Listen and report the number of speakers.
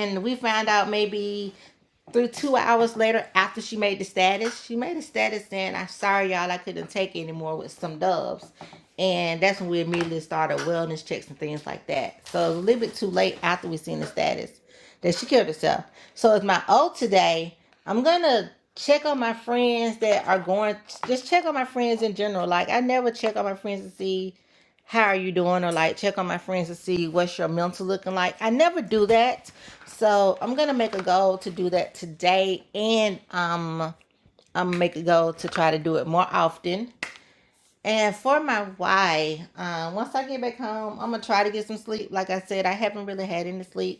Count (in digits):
1